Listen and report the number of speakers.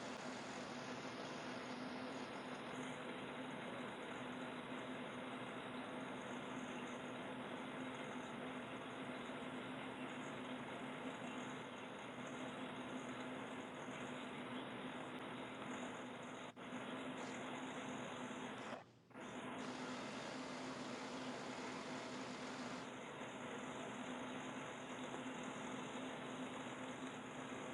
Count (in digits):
0